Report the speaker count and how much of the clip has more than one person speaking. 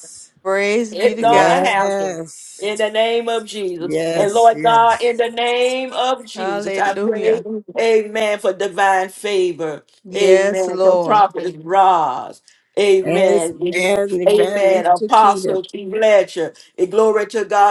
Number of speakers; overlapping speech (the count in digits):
3, about 36%